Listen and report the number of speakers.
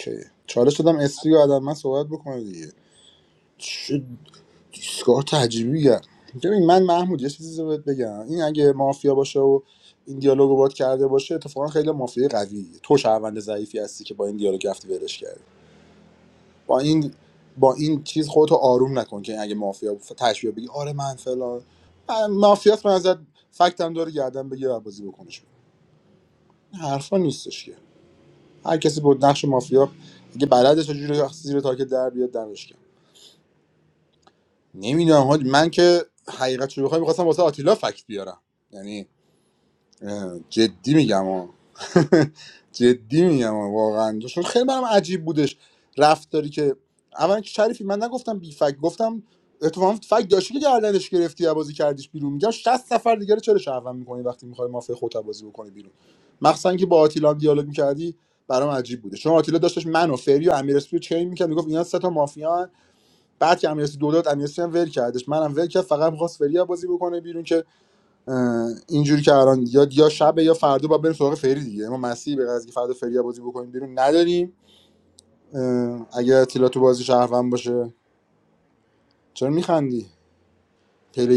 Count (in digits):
1